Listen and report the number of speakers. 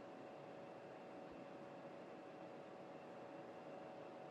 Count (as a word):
zero